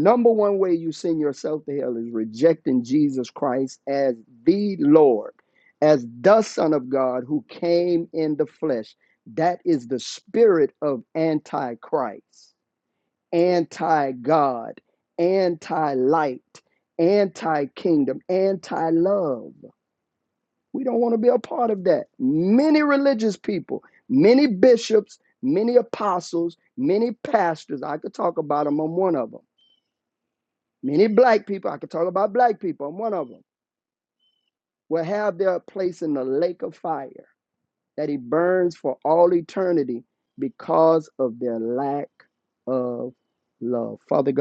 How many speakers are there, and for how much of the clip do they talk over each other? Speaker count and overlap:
one, no overlap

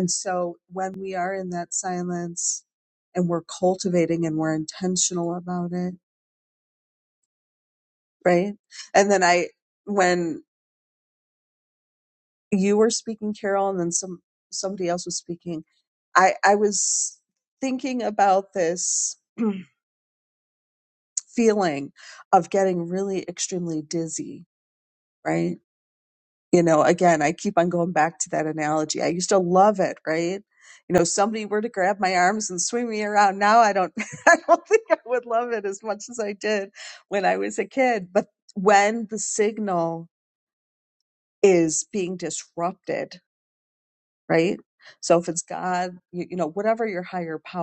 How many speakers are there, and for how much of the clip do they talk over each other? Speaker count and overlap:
one, no overlap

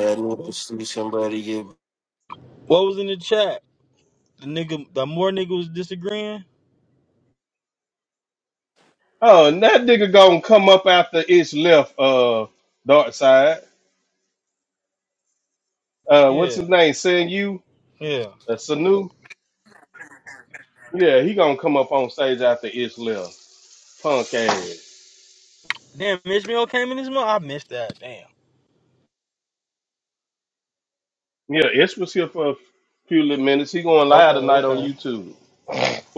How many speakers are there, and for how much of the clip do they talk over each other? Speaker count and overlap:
three, about 3%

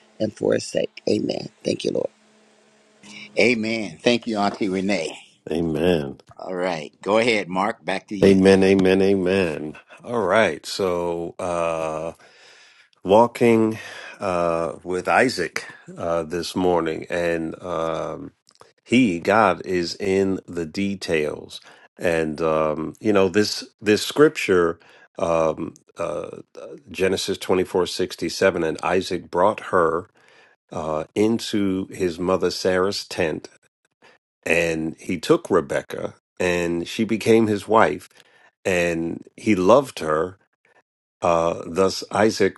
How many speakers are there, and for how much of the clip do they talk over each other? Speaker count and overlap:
three, under 1%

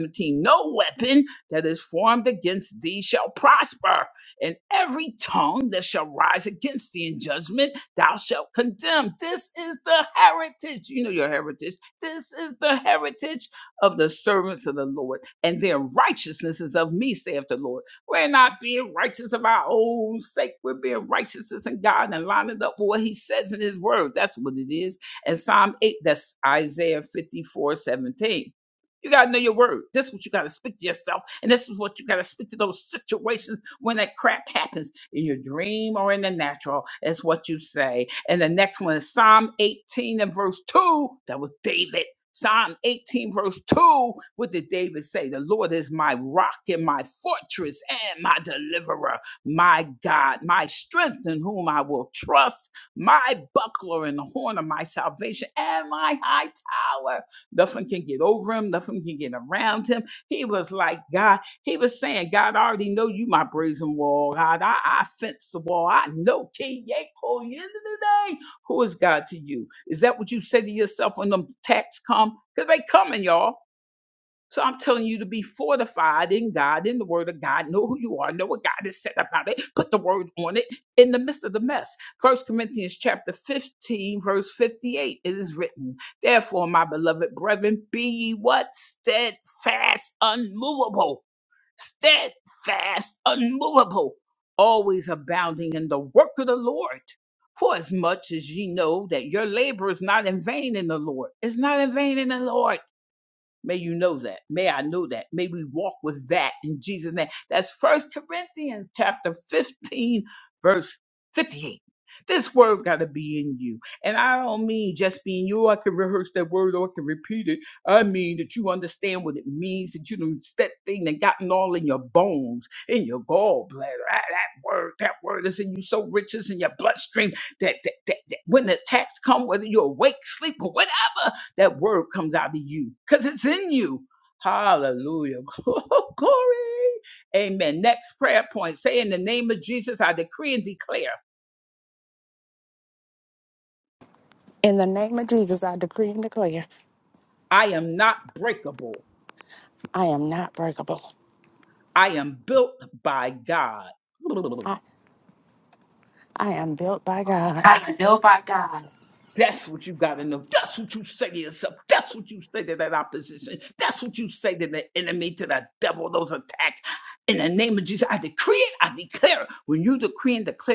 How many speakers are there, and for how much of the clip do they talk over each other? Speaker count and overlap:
three, under 1%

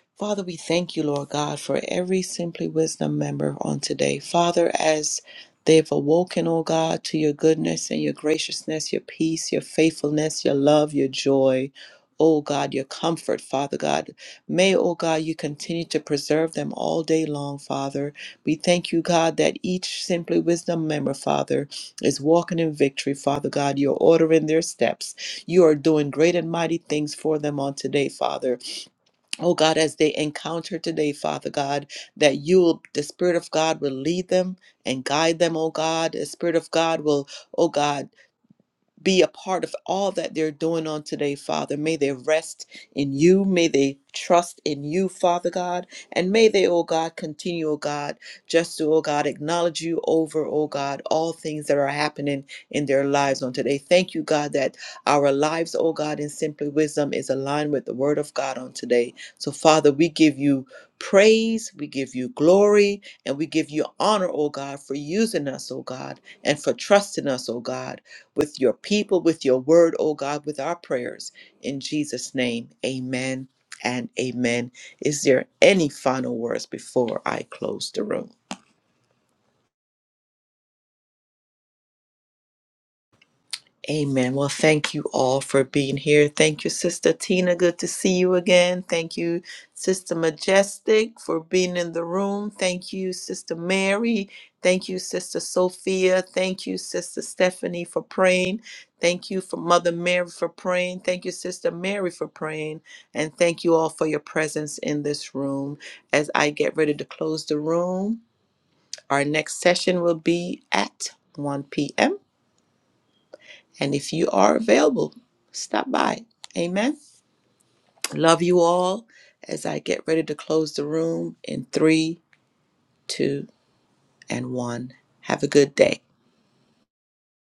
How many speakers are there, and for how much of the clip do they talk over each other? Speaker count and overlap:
one, no overlap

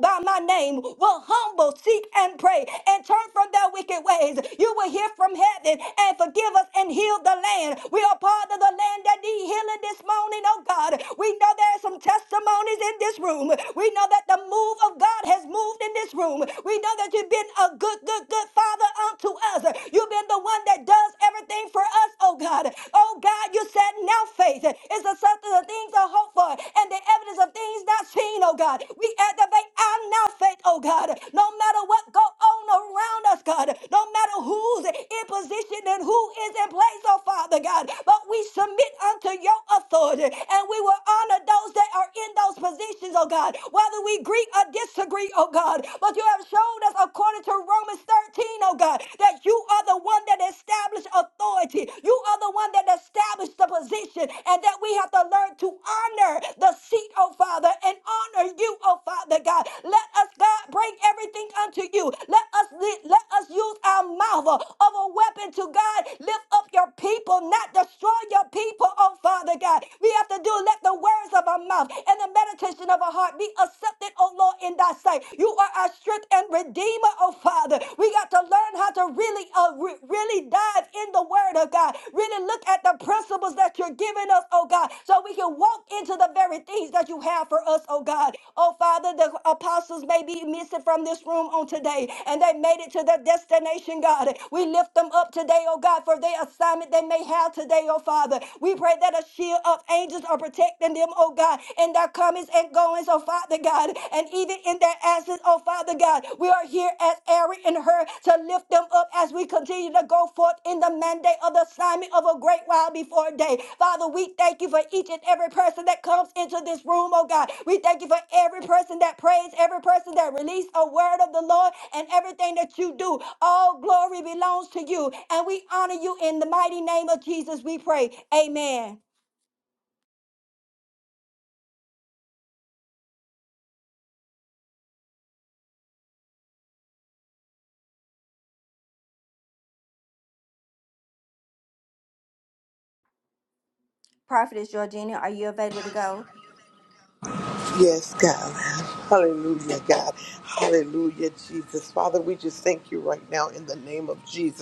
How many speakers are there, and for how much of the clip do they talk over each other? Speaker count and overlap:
two, no overlap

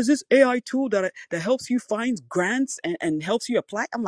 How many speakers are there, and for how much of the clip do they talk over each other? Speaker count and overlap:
one, no overlap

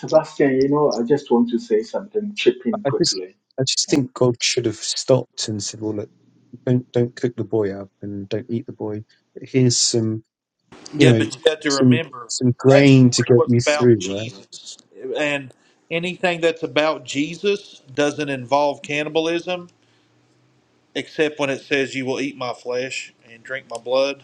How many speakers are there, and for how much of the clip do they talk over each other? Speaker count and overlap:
three, about 12%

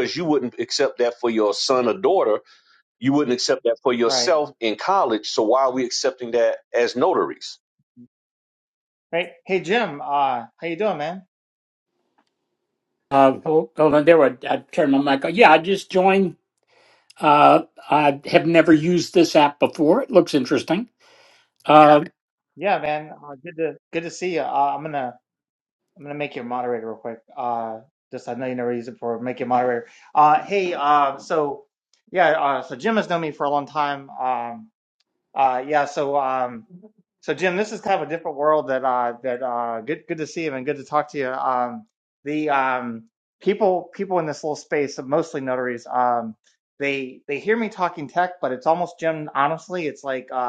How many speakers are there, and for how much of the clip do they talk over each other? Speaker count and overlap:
three, about 1%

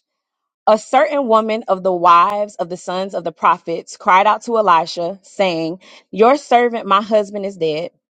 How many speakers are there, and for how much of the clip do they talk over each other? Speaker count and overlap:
one, no overlap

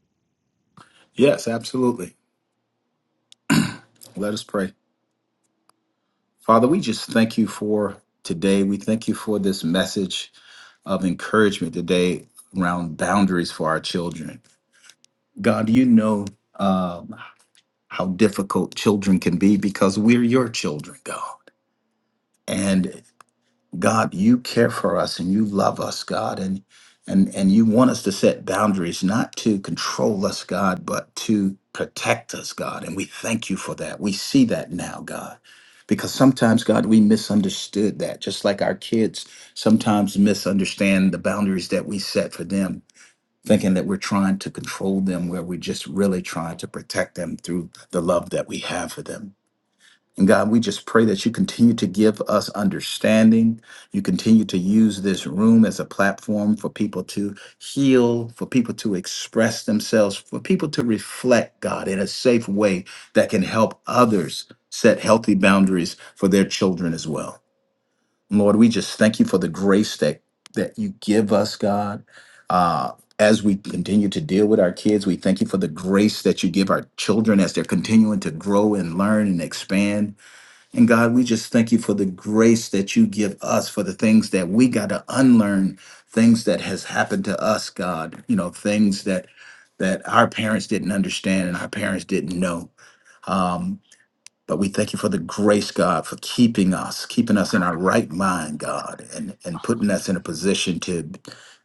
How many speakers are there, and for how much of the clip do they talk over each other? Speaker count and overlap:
one, no overlap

